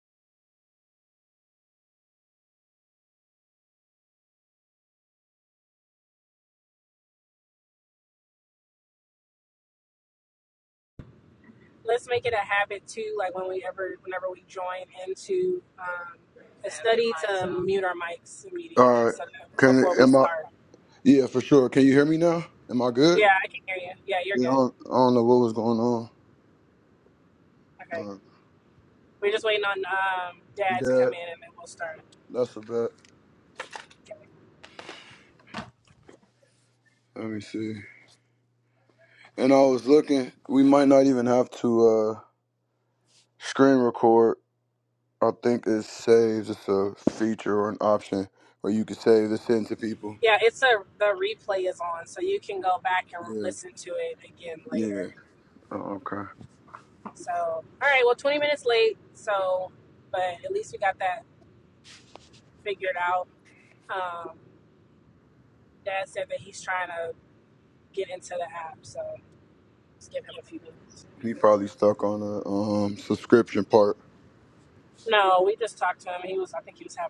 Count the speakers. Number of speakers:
2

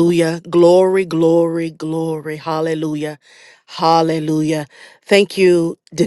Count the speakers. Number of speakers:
1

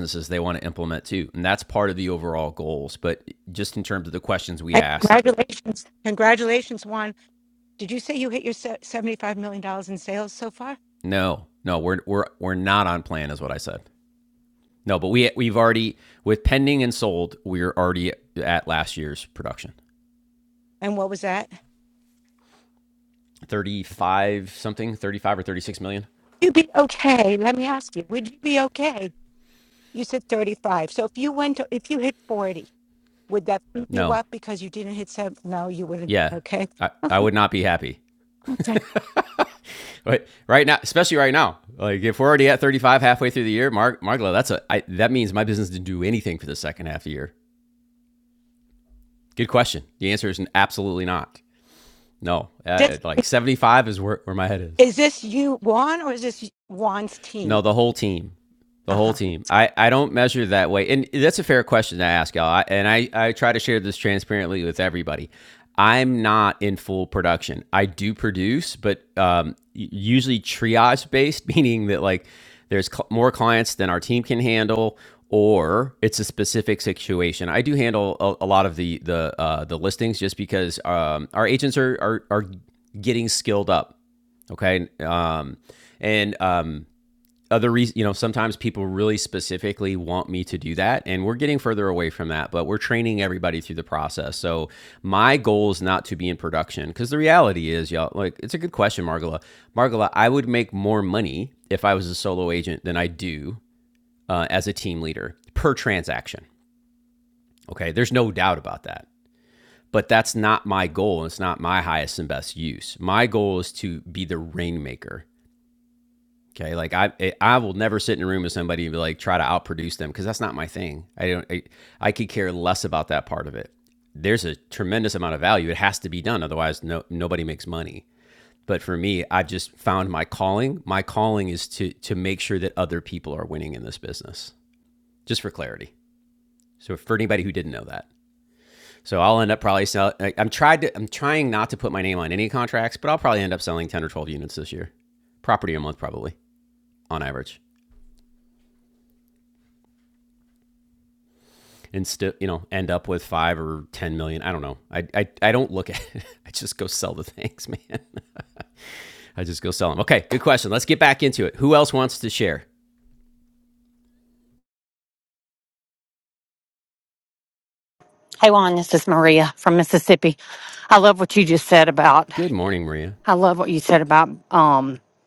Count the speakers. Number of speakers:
3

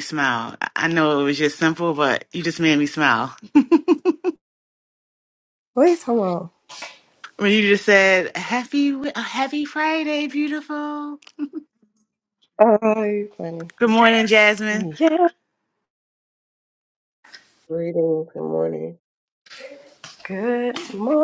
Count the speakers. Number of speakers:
3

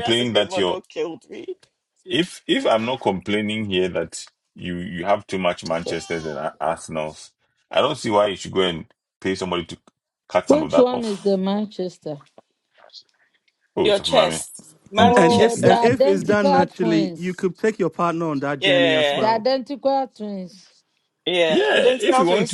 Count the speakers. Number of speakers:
4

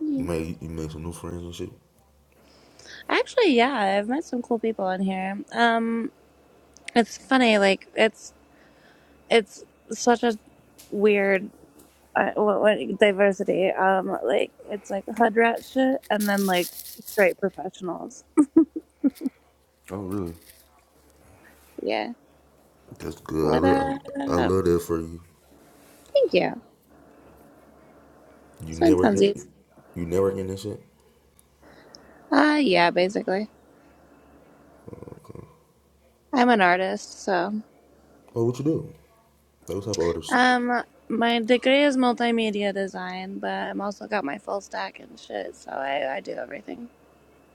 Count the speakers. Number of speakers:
2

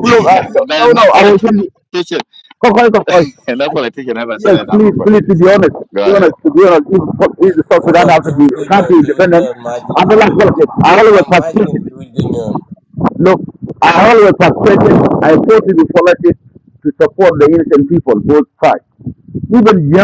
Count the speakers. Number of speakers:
3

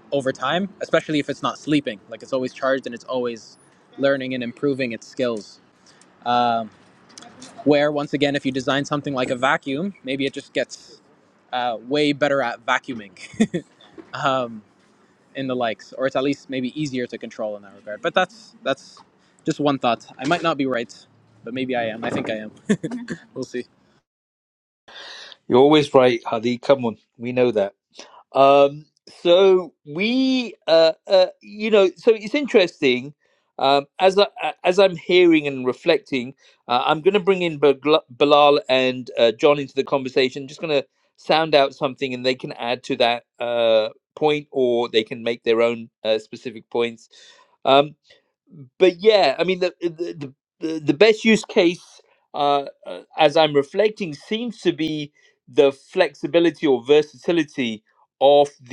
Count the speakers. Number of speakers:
2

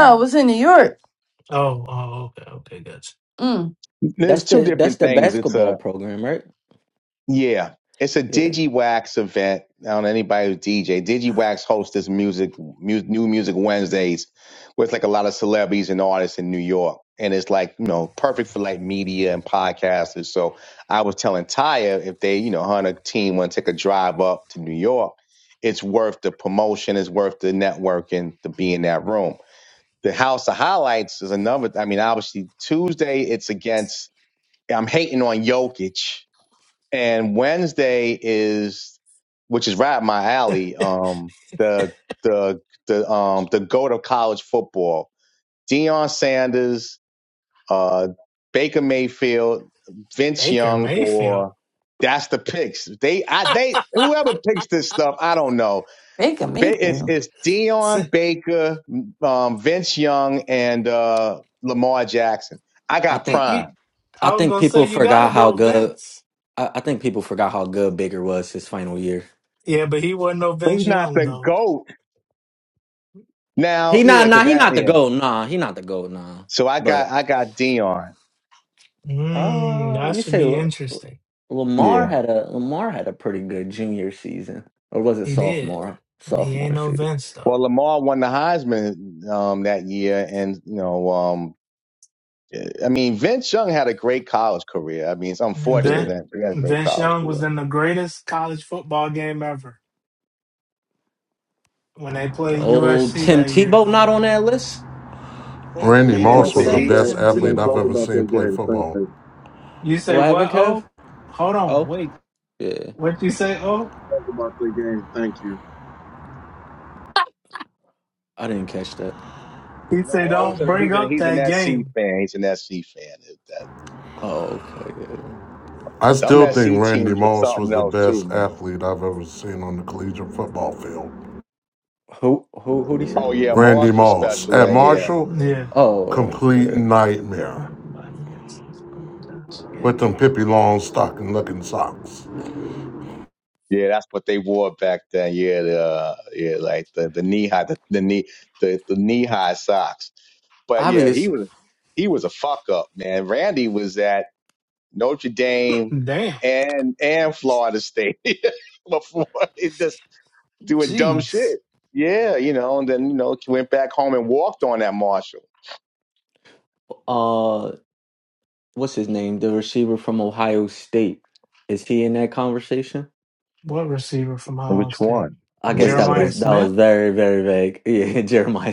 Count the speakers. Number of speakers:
6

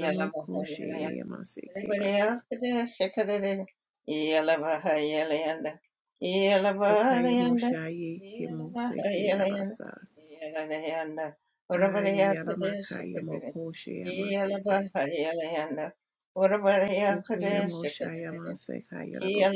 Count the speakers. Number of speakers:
2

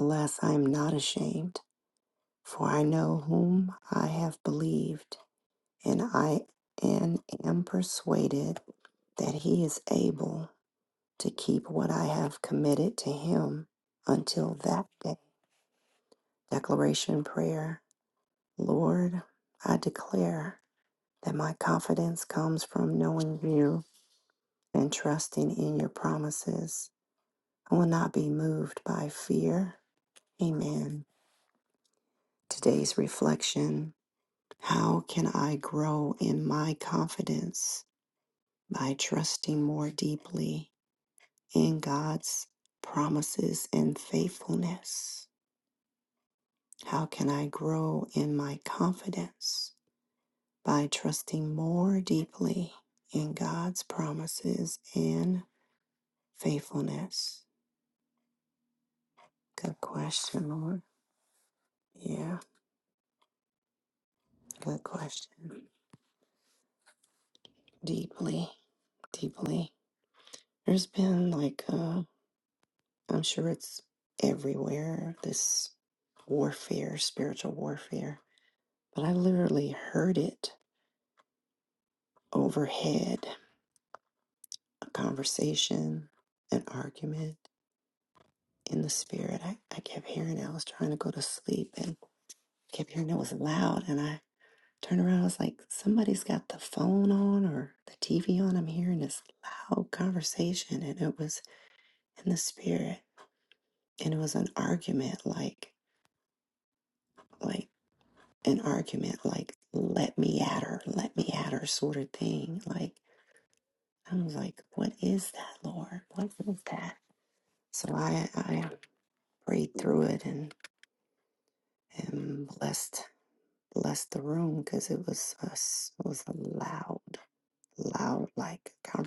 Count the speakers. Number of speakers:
1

